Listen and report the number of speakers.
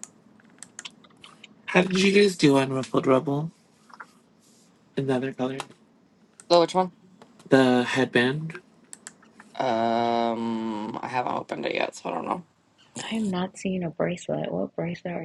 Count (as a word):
three